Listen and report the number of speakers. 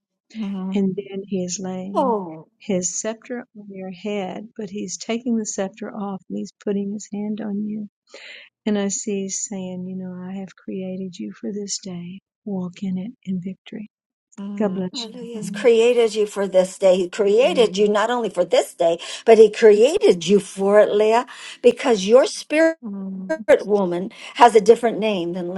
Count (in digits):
3